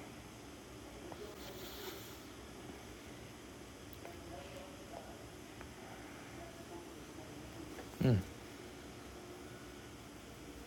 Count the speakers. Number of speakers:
0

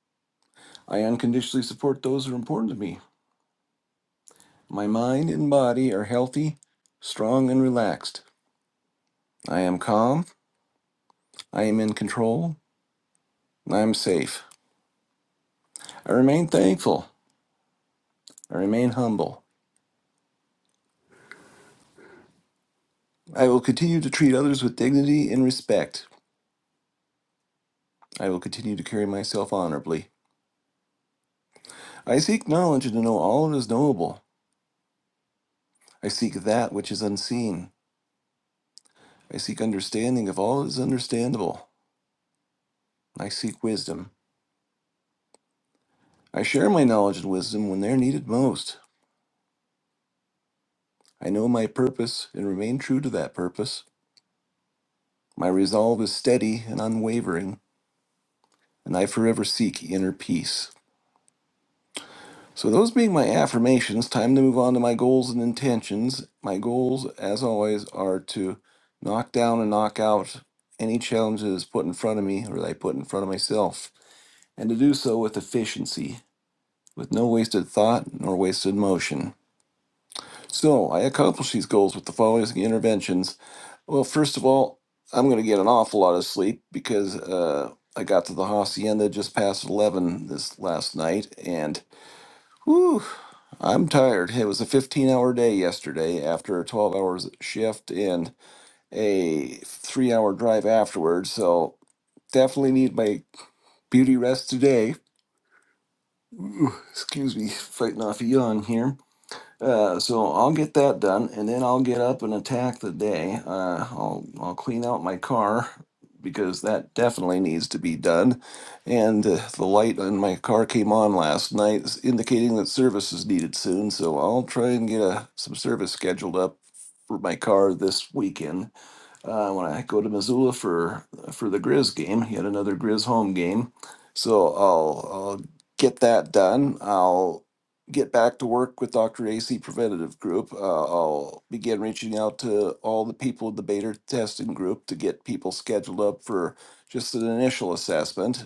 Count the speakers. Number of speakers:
1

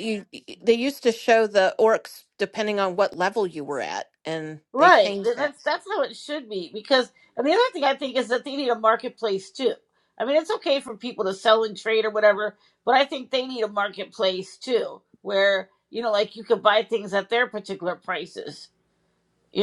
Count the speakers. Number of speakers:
2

